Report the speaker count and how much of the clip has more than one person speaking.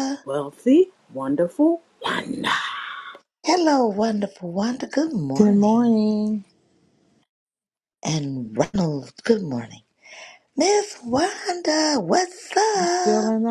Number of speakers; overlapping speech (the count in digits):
3, about 8%